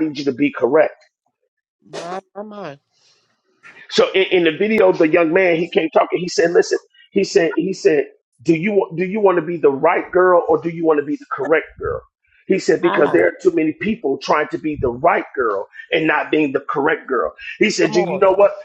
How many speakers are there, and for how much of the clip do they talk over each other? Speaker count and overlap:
2, about 4%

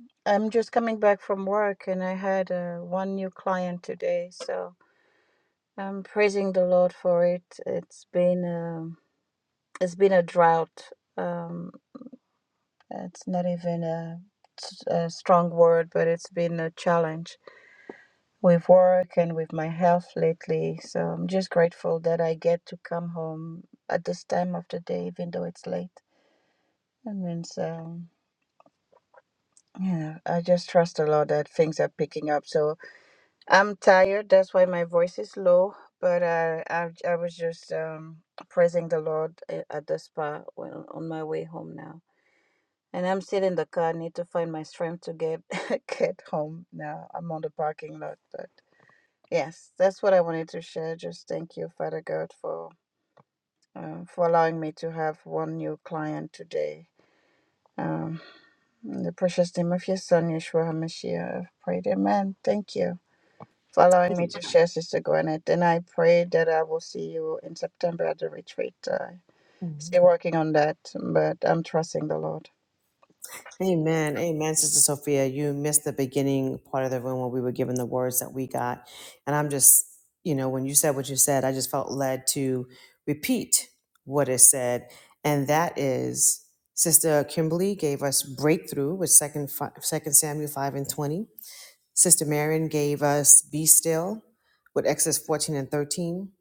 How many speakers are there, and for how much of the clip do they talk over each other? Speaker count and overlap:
2, no overlap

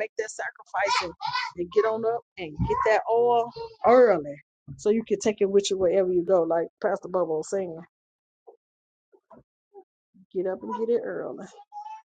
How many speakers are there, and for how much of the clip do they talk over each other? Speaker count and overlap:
1, no overlap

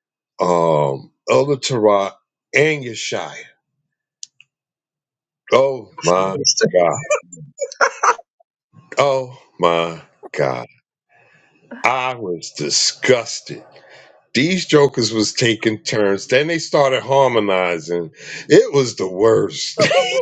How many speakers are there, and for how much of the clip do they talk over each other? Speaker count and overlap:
1, no overlap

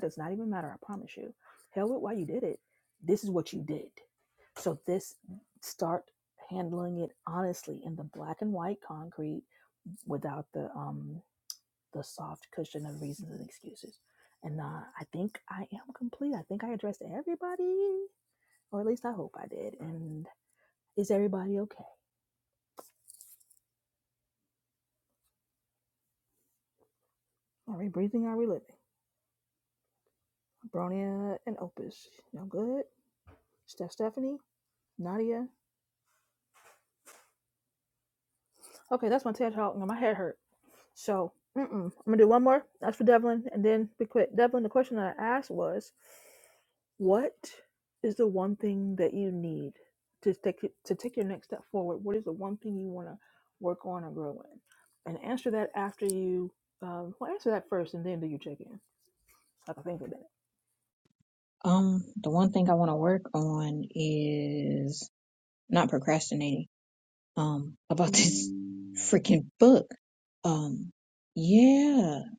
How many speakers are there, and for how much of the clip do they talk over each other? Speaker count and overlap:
2, no overlap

